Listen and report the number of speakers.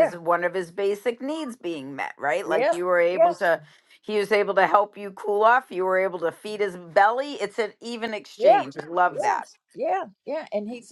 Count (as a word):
two